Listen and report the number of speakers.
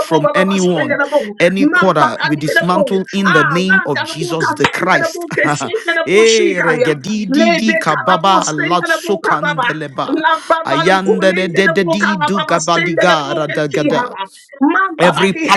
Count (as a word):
two